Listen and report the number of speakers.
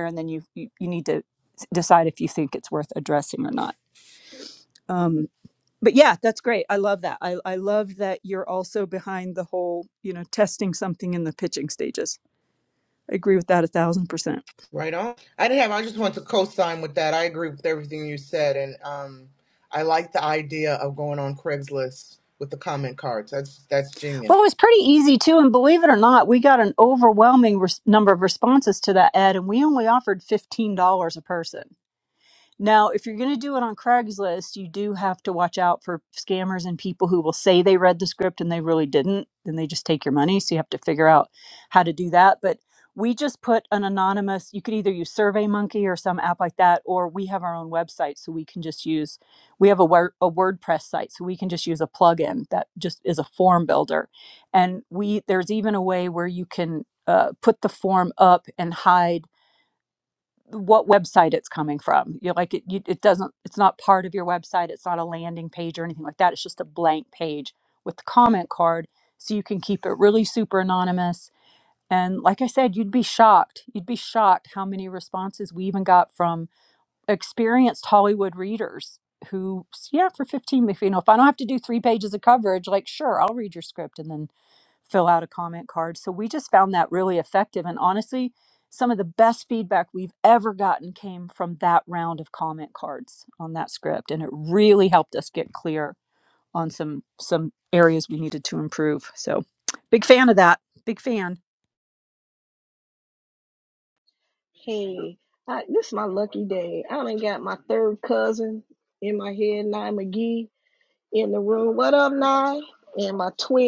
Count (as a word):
three